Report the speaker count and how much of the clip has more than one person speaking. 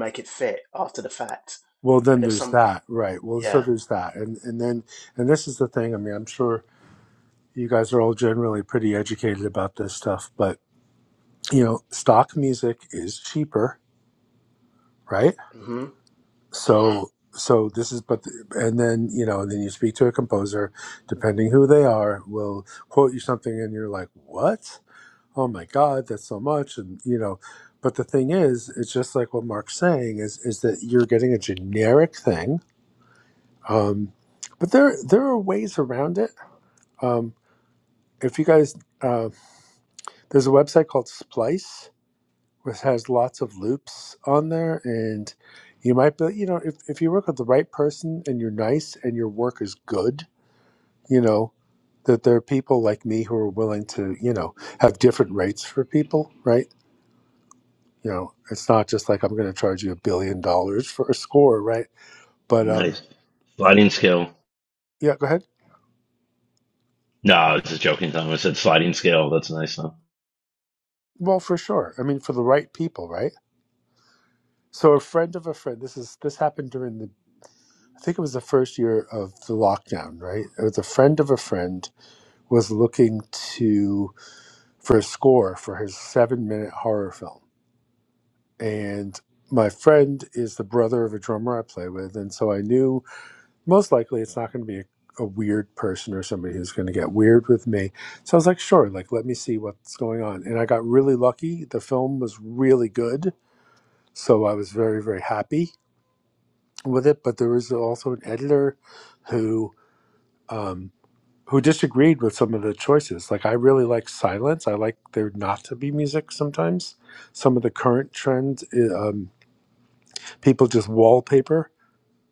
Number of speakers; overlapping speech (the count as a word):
three, about 1%